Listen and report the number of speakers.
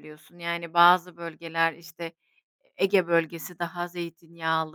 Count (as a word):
one